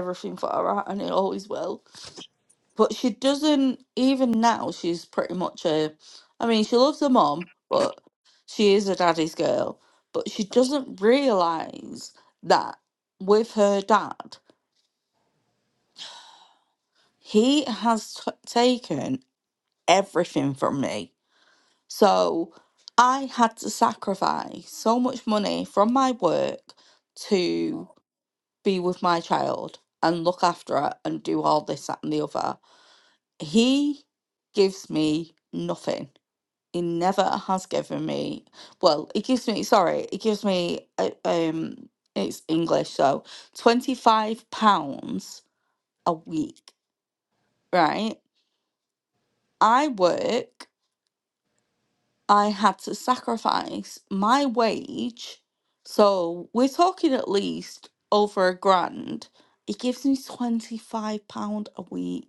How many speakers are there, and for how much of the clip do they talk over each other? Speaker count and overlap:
1, no overlap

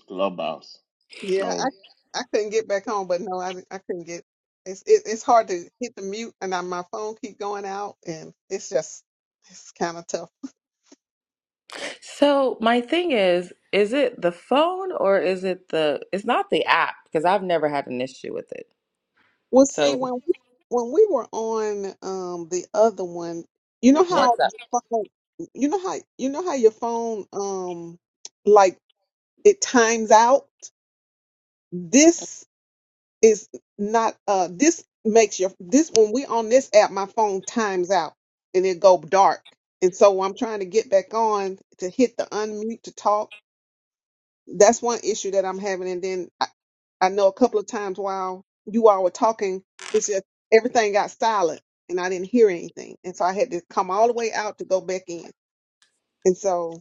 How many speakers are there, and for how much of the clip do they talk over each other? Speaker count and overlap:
3, about 2%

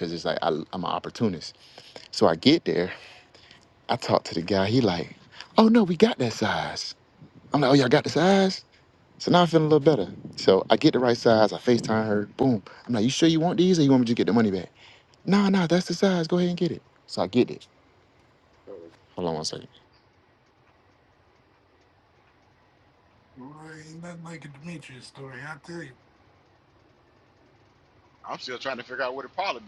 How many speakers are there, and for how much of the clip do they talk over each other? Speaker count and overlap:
3, no overlap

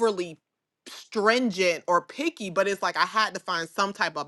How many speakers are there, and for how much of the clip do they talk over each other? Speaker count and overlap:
1, no overlap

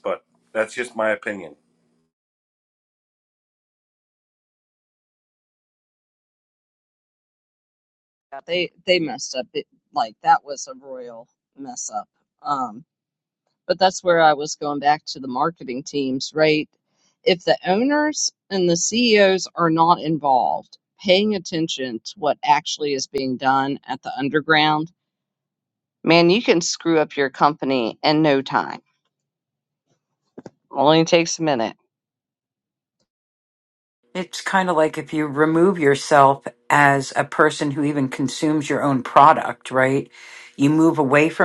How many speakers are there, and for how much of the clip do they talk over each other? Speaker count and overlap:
3, no overlap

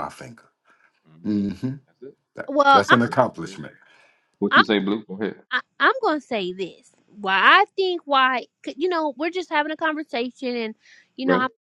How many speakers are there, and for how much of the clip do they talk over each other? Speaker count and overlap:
3, about 11%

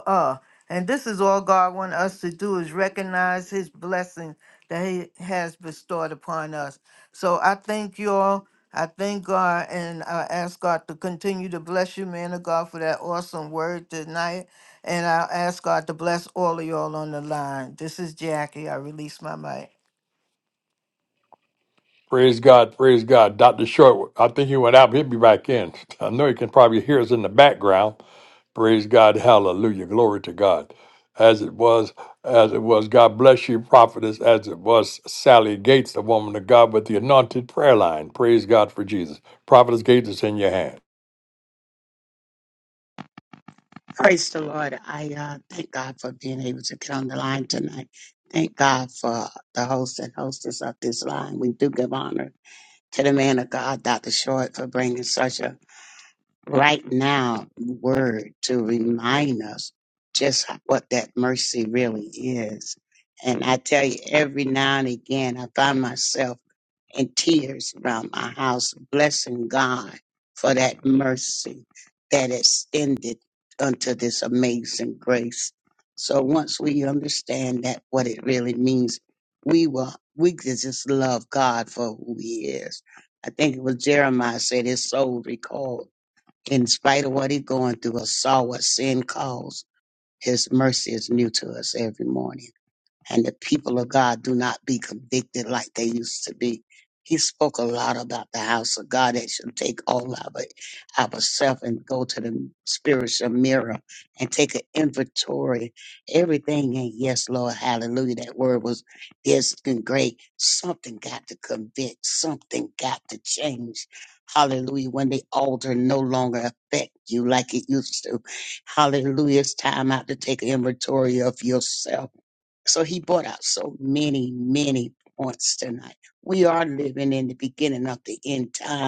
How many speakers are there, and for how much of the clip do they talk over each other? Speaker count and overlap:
3, no overlap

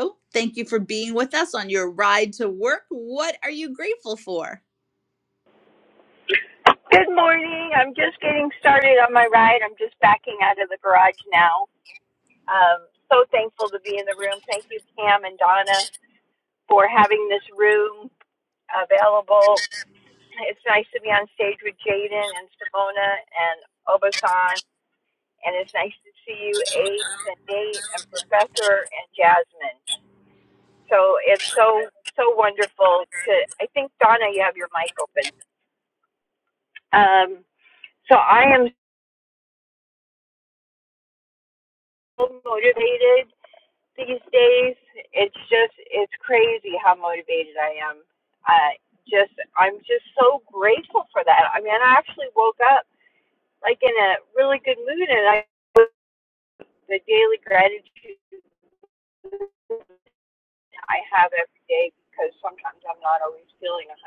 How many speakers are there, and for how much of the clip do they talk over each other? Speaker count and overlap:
2, no overlap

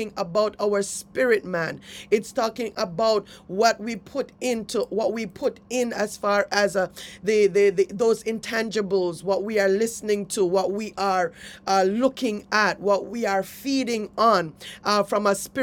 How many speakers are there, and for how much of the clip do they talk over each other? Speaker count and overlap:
1, no overlap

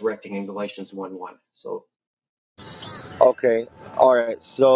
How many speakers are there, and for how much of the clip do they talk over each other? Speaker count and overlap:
2, no overlap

